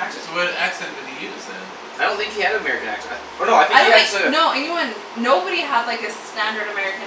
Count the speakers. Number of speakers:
three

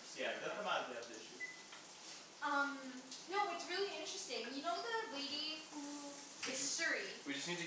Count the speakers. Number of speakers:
three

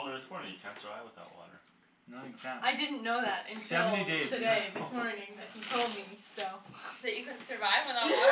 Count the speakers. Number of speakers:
four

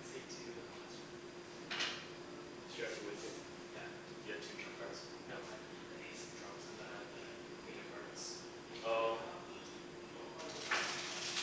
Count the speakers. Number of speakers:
two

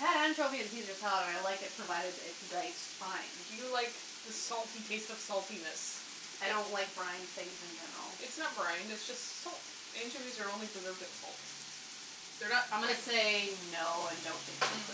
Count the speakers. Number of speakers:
two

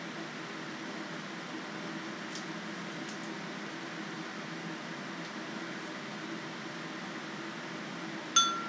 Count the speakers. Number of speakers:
zero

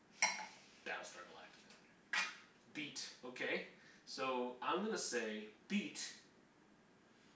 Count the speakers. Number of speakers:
one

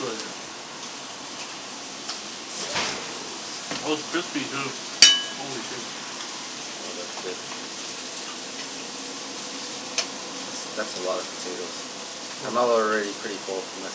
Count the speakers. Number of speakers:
two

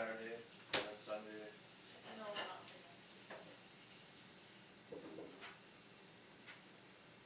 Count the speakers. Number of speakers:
two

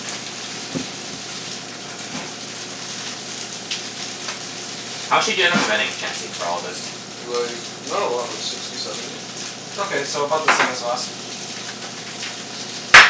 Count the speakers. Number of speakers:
three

